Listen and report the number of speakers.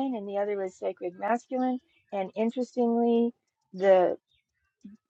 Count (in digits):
1